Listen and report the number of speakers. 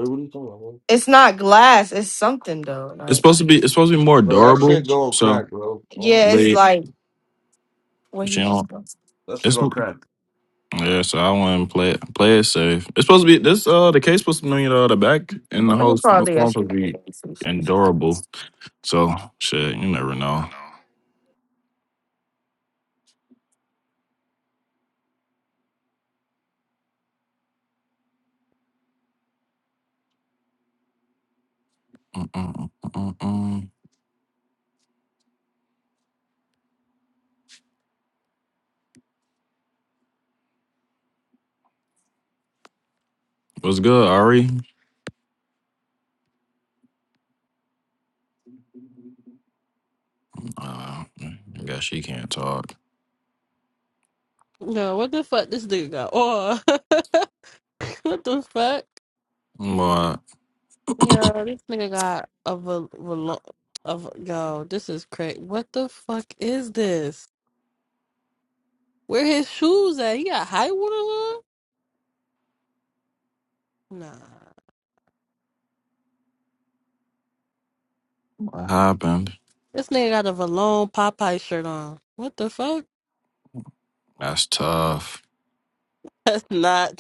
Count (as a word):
four